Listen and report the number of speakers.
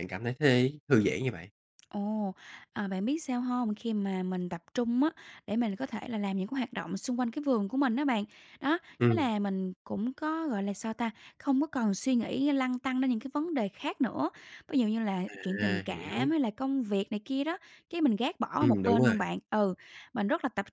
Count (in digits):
2